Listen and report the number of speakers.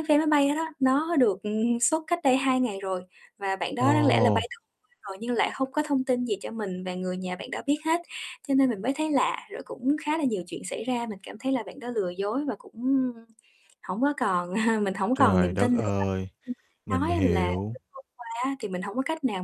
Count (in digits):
2